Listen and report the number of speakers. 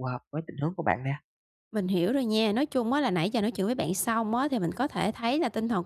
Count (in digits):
2